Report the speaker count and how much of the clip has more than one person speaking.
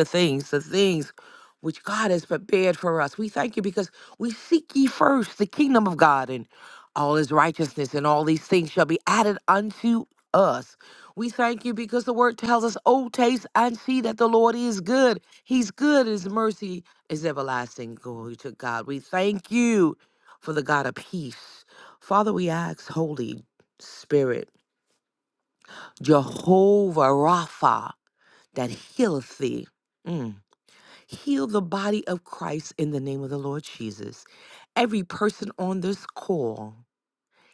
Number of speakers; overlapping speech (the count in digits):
1, no overlap